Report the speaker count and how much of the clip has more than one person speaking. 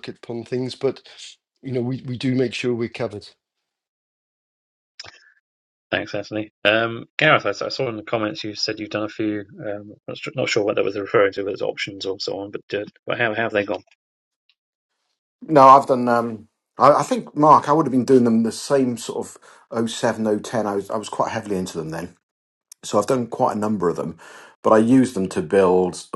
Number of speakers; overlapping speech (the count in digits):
3, no overlap